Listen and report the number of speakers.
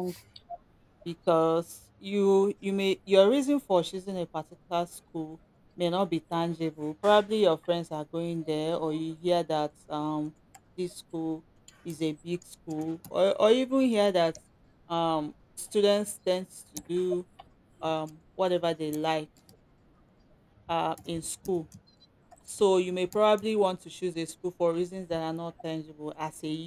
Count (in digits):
1